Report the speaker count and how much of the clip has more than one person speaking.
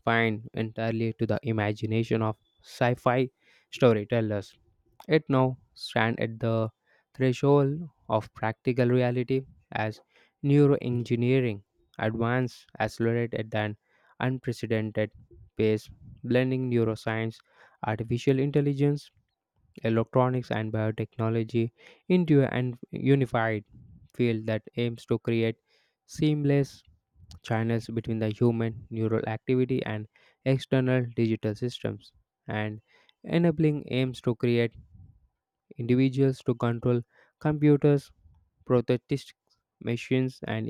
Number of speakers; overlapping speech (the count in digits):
1, no overlap